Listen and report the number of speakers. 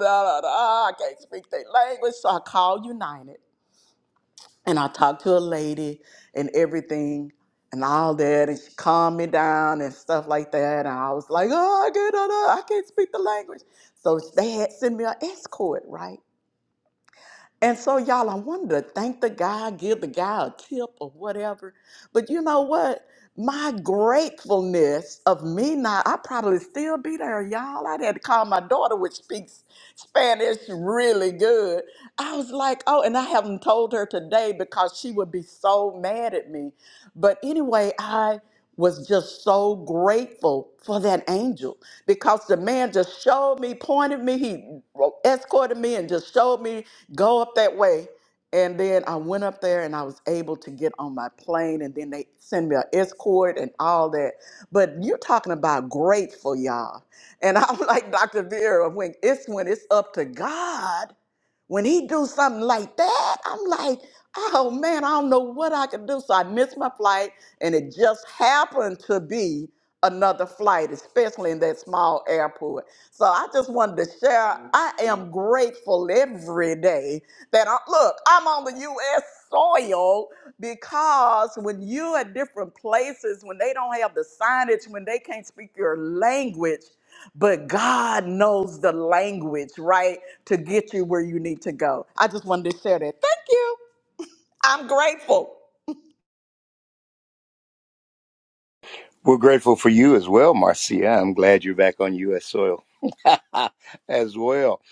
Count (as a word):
two